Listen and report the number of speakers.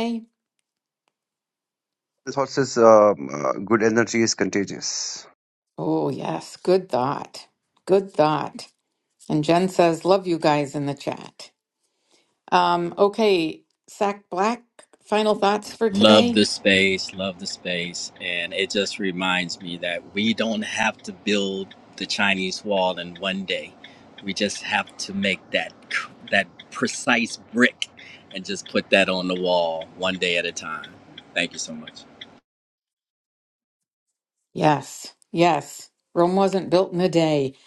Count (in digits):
3